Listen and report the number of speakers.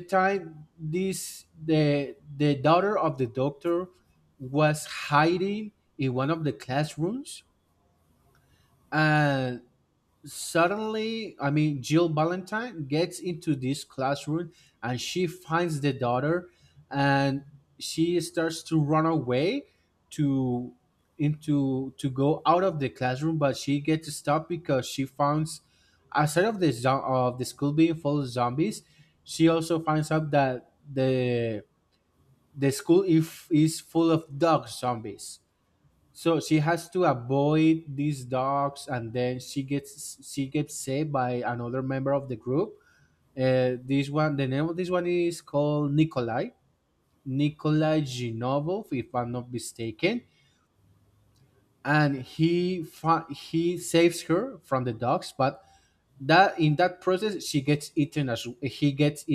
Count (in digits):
1